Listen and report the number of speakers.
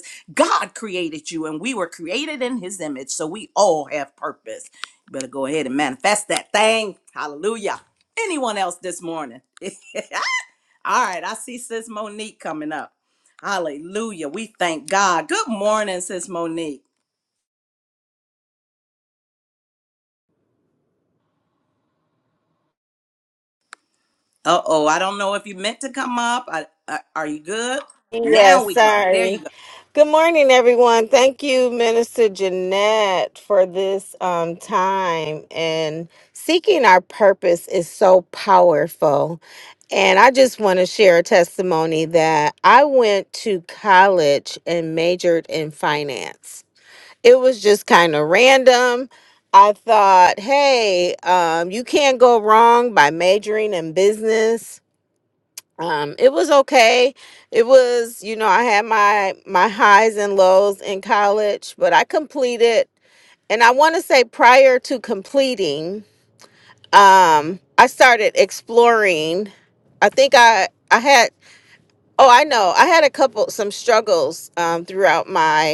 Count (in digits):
2